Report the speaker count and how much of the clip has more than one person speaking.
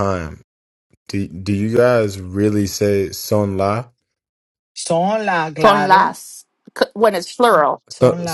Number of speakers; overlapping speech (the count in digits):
3, about 10%